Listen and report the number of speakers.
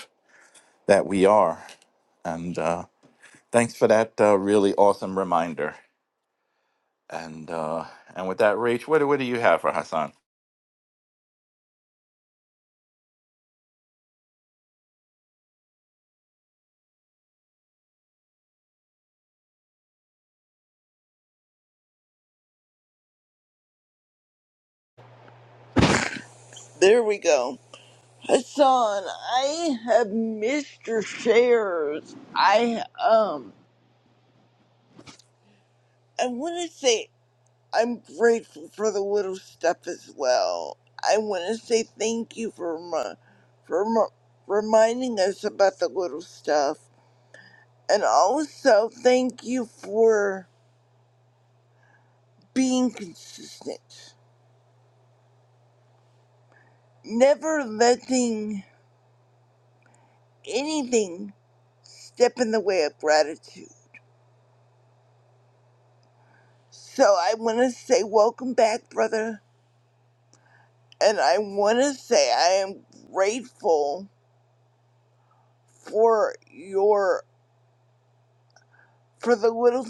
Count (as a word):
two